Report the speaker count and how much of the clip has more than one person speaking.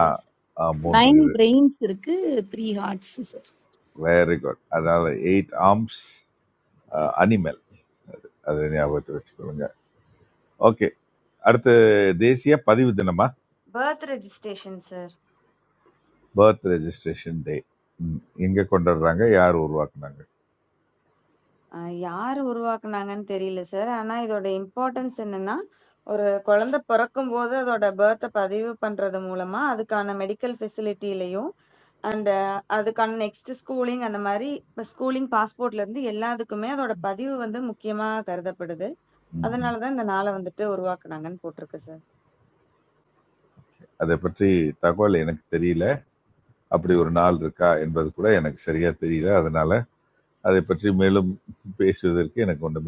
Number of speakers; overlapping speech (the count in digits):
3, about 2%